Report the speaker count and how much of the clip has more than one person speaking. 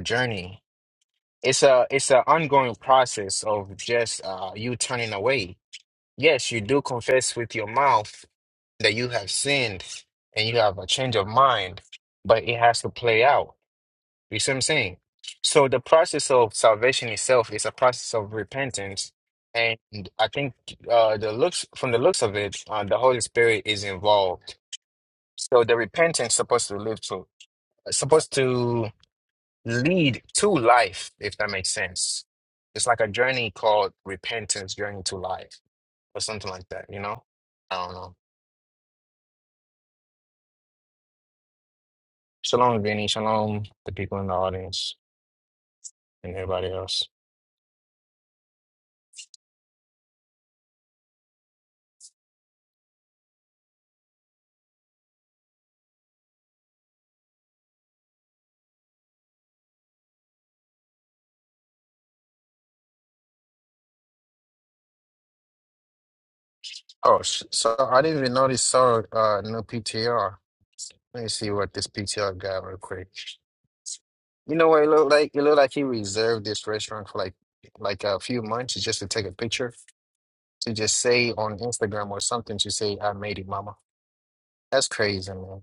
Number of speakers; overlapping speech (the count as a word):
one, no overlap